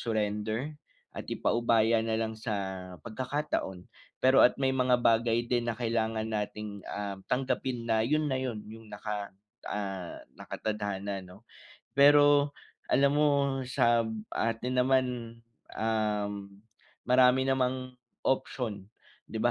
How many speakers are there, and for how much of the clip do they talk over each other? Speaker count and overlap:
one, no overlap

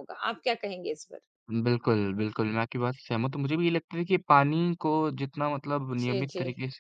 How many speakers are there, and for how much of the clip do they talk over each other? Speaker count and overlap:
two, about 7%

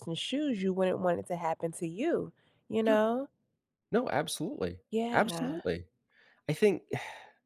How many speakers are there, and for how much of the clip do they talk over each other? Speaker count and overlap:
two, about 8%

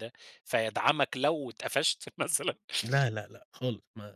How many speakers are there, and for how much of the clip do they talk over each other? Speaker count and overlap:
two, no overlap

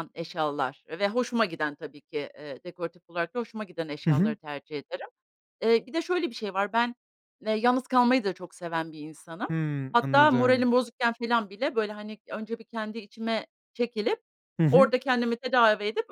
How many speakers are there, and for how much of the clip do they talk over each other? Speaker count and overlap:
two, about 7%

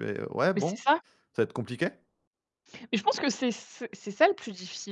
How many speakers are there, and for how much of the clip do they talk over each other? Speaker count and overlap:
two, about 5%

